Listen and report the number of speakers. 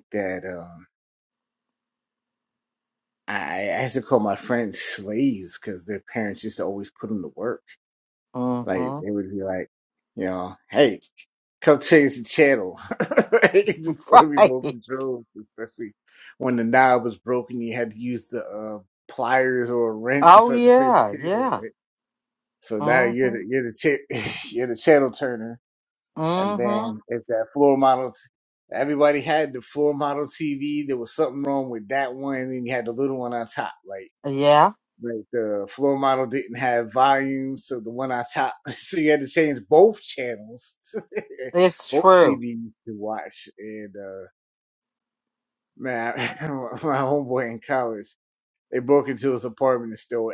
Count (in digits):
2